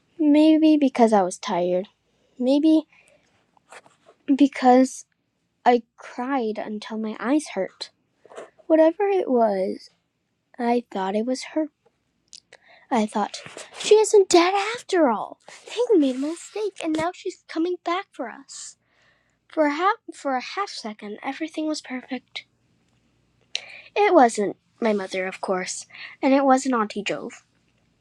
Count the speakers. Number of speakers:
1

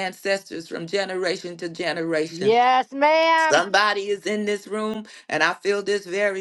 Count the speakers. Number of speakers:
2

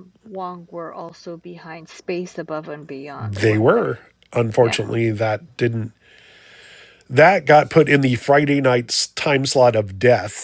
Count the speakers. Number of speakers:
2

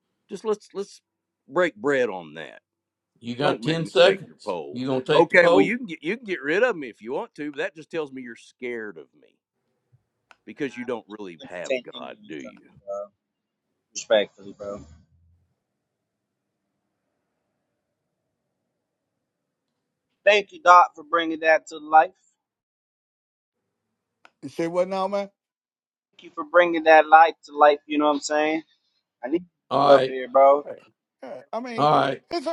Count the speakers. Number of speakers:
4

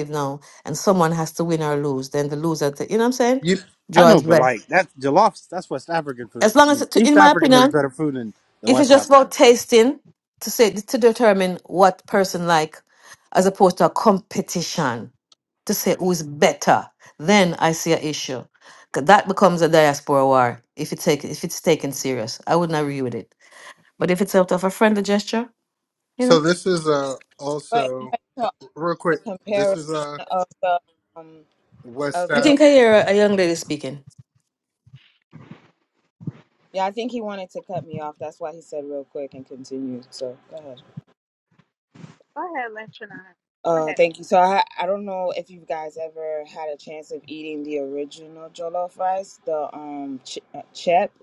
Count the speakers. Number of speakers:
5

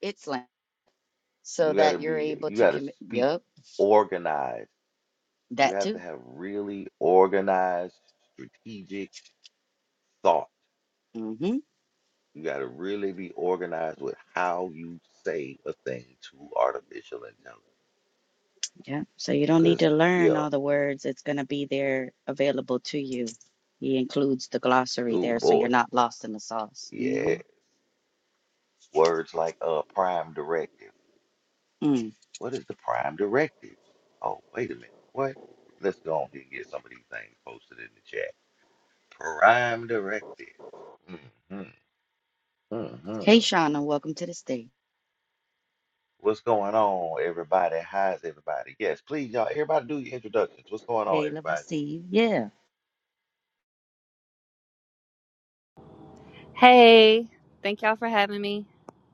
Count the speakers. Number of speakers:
3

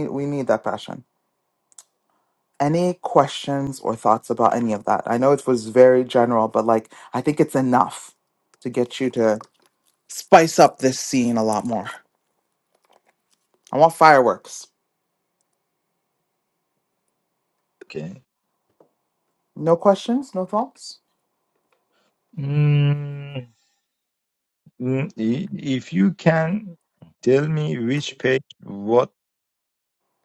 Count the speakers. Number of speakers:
2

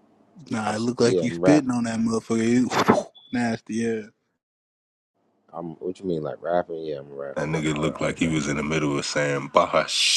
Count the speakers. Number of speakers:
3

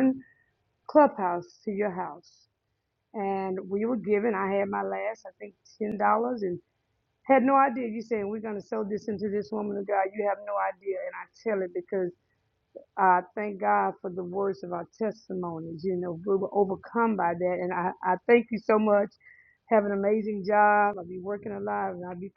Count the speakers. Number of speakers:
1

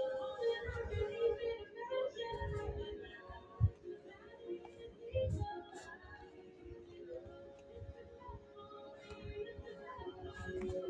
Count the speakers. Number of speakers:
0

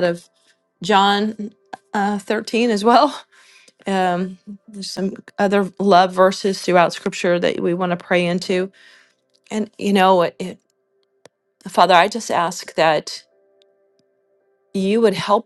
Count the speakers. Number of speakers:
1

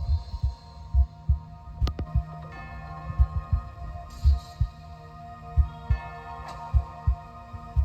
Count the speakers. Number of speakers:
0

